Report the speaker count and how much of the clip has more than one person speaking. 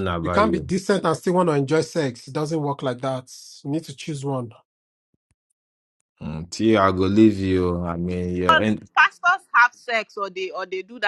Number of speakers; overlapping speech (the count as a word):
three, about 3%